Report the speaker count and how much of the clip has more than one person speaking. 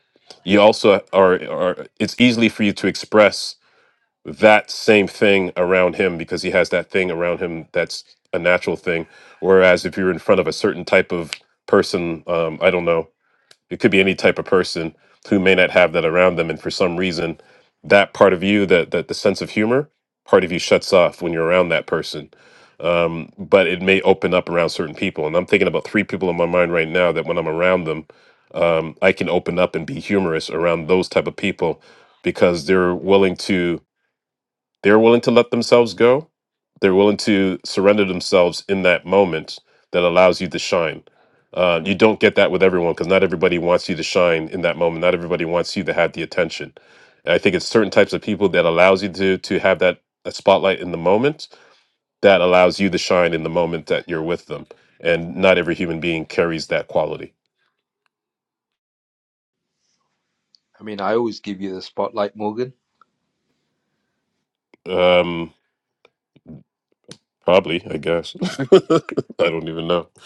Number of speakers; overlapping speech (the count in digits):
2, no overlap